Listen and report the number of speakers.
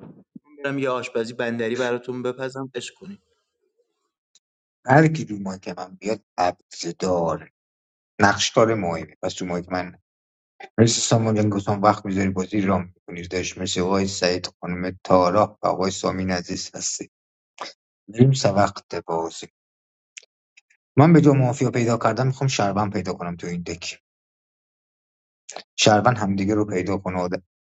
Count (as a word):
two